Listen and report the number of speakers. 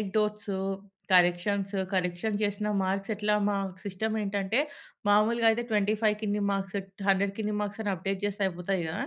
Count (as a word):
one